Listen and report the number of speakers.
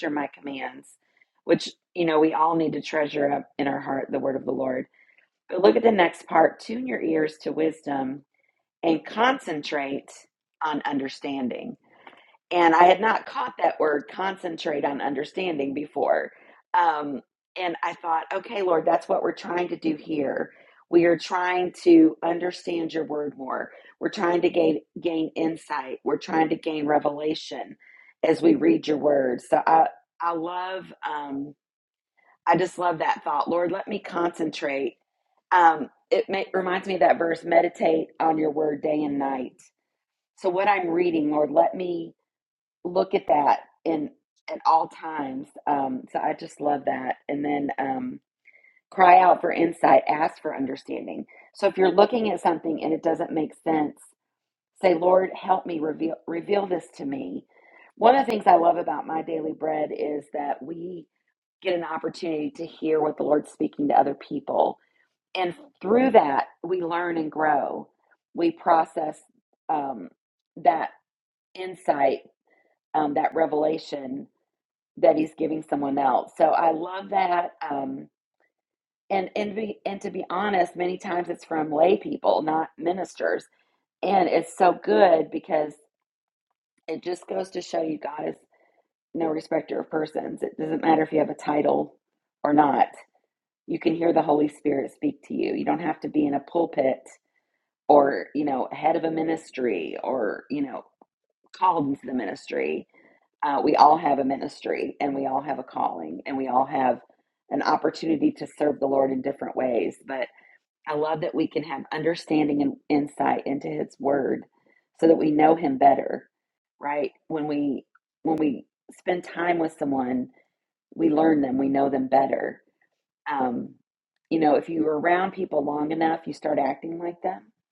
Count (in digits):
1